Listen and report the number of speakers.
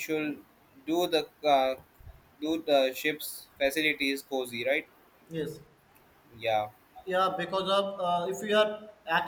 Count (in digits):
2